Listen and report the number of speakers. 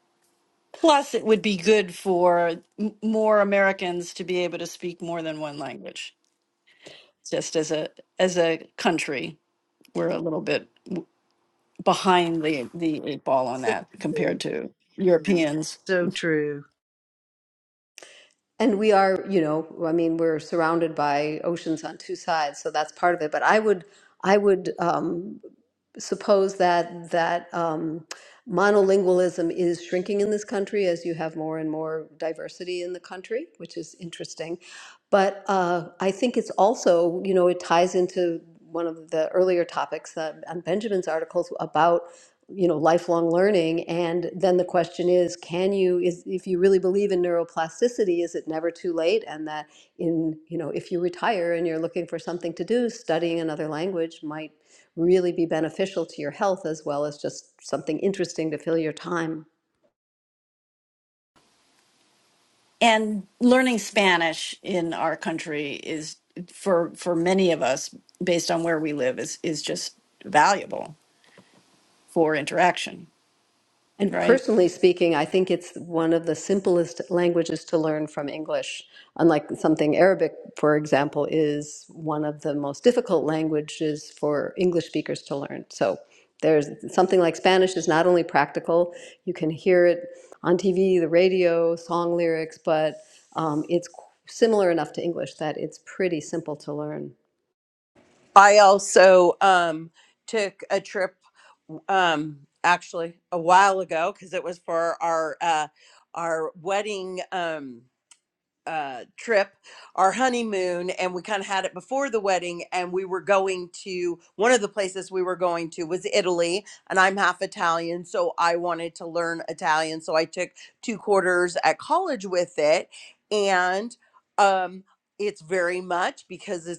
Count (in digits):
4